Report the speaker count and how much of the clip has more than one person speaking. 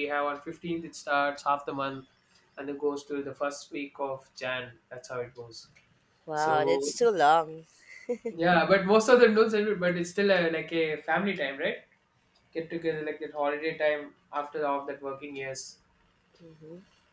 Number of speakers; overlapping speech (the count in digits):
2, about 3%